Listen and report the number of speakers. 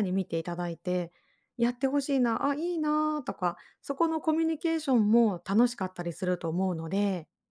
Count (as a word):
one